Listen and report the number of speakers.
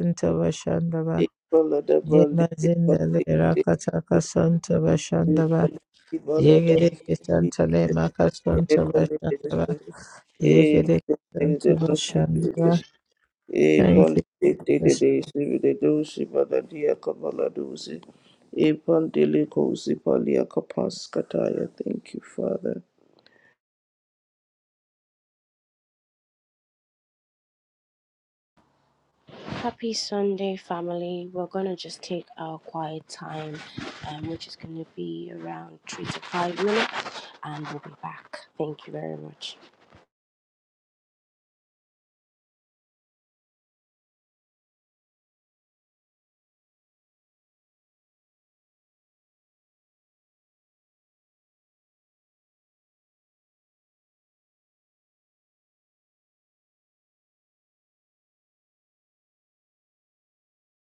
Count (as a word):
three